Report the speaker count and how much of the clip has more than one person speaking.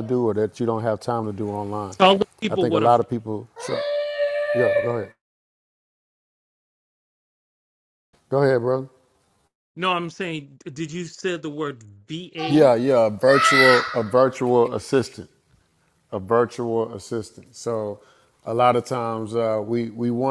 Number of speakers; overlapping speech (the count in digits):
2, about 4%